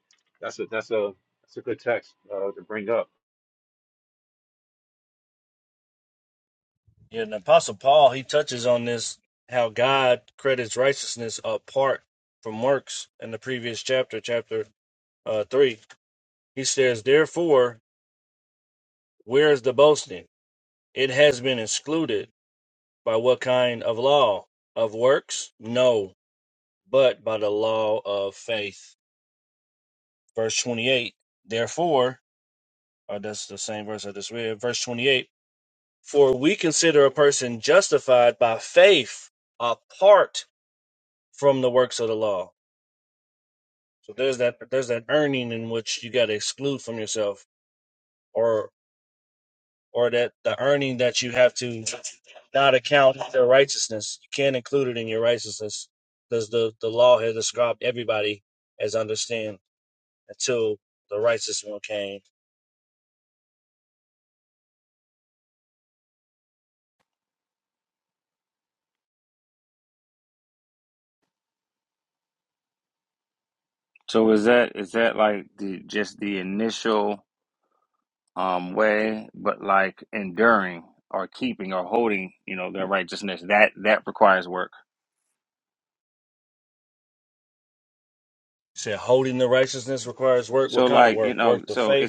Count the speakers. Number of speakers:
3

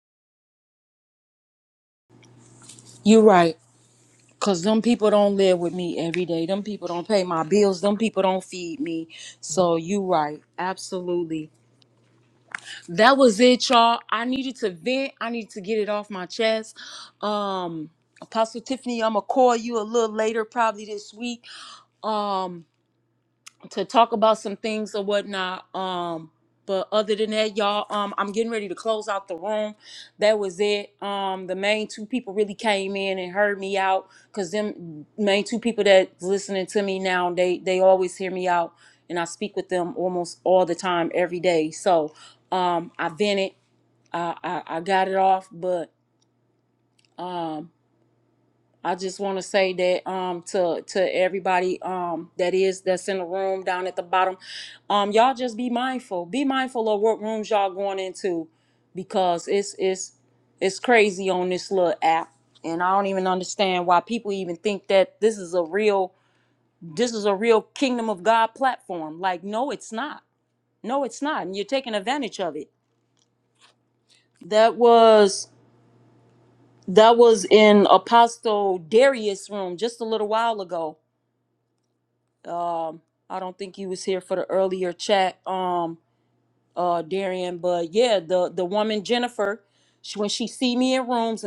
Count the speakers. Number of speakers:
1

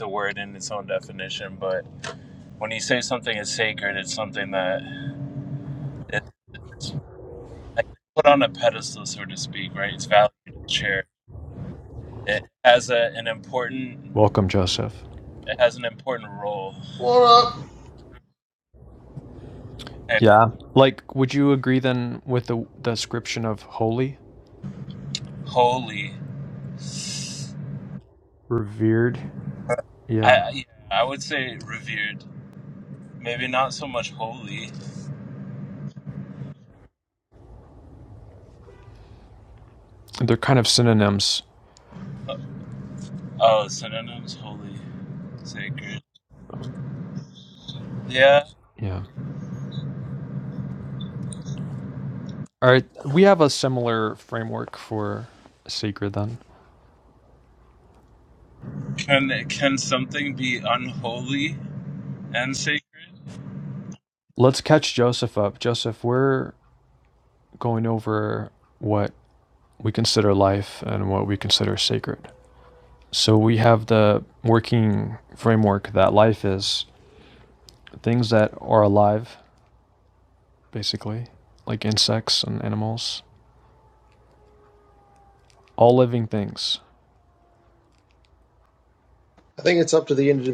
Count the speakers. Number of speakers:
3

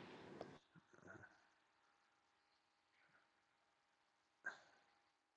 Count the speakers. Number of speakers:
0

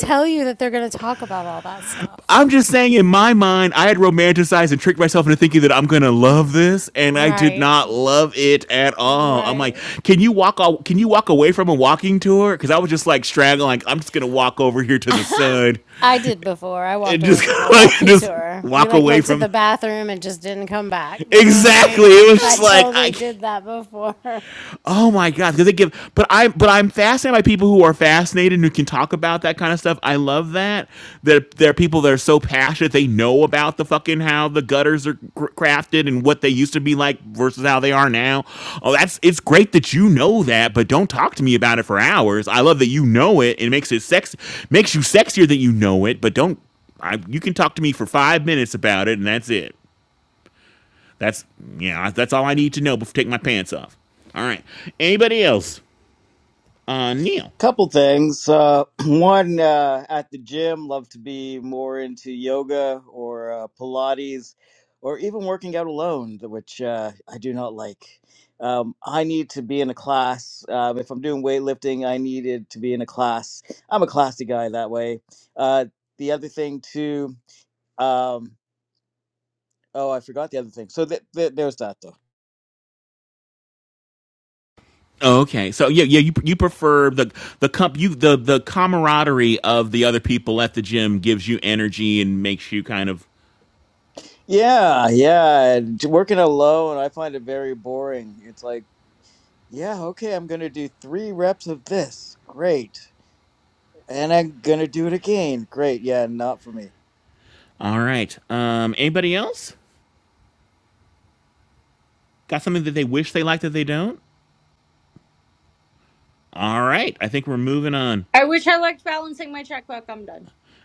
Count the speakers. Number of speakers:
4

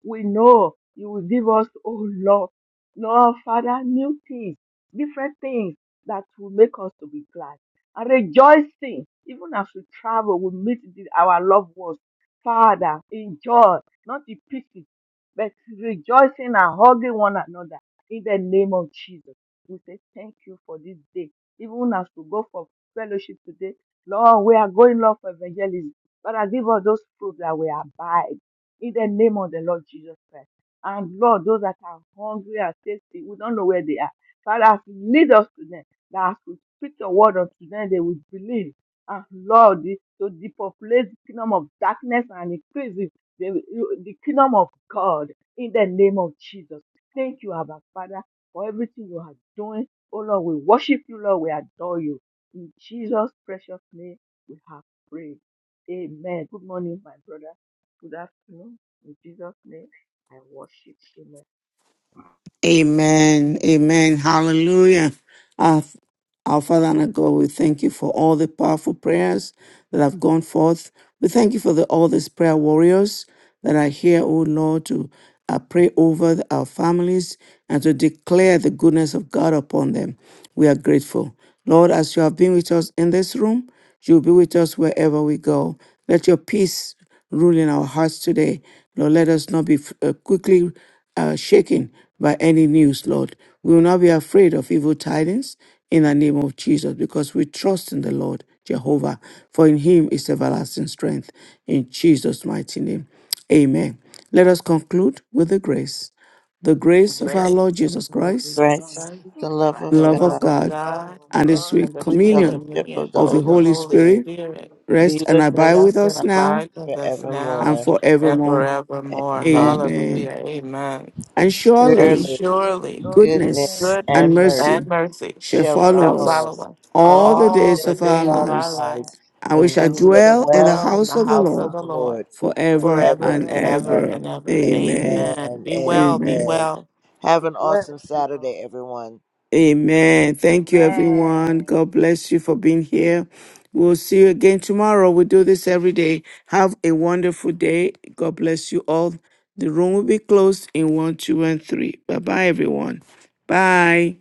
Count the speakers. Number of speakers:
4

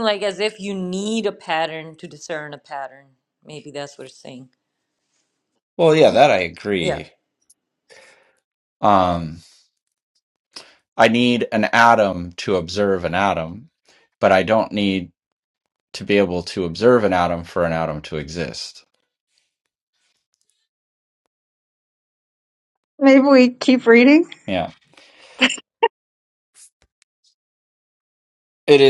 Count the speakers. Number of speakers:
3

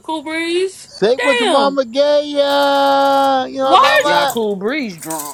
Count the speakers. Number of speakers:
3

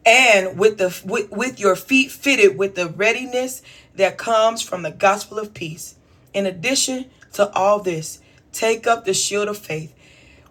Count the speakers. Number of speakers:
1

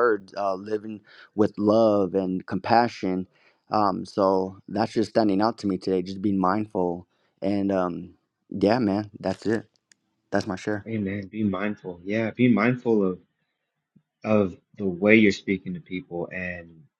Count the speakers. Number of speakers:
2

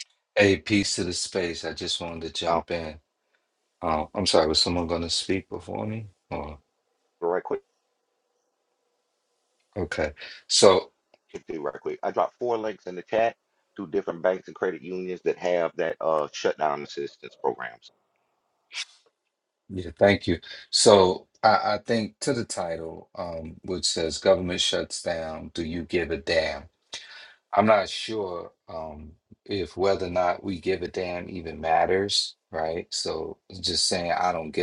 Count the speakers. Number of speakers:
2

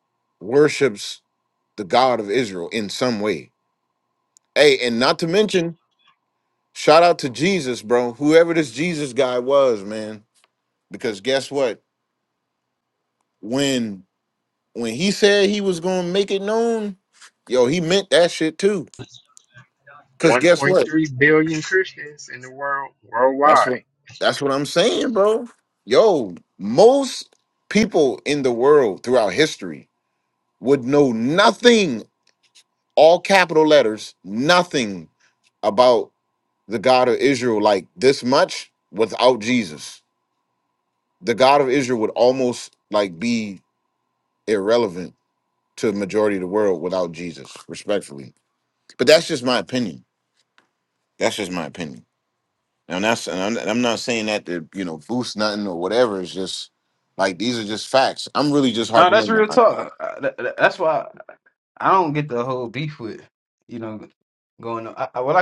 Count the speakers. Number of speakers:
3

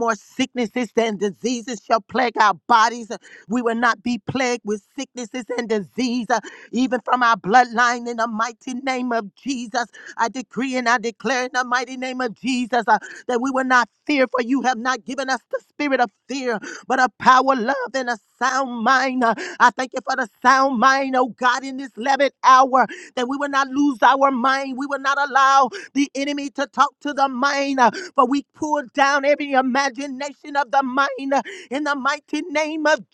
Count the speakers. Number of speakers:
1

